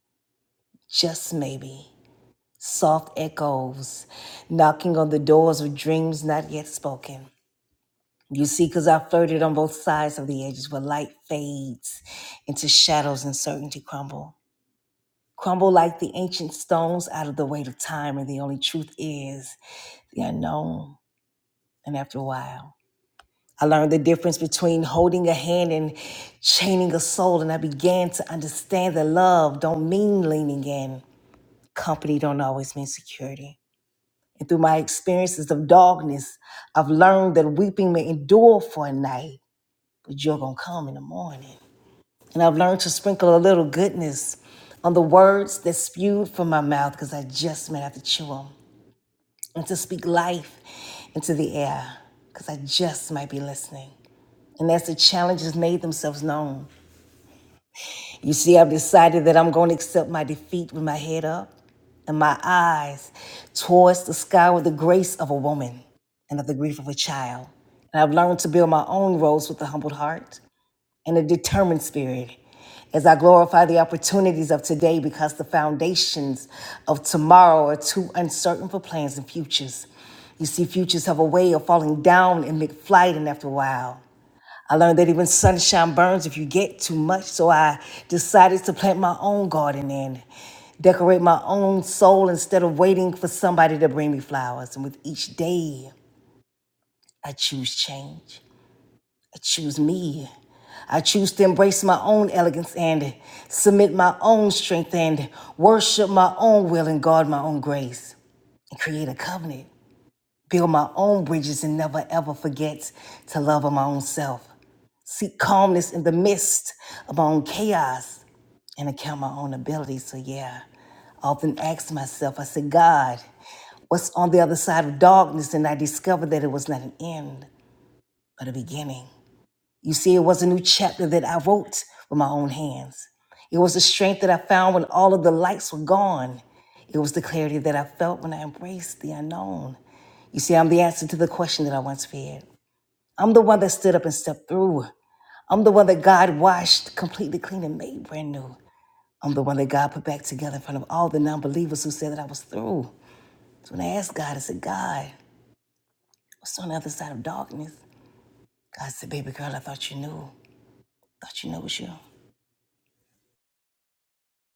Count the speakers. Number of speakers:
1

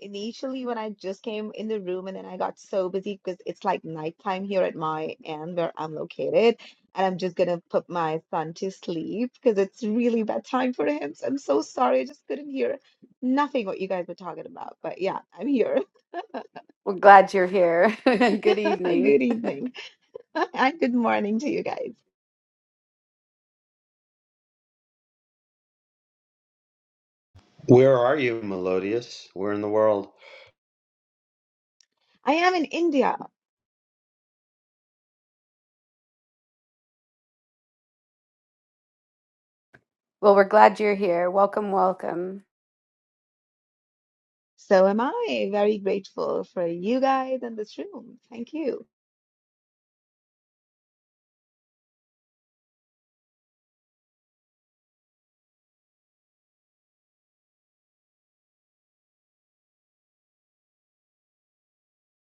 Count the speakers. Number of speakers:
3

